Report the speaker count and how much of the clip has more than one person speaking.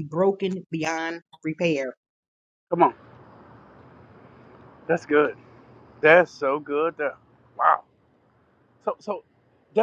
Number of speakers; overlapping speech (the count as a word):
two, no overlap